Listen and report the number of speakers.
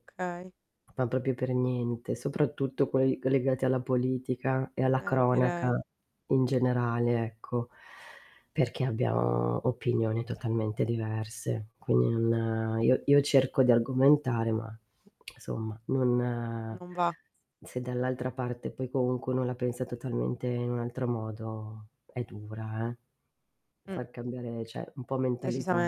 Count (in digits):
2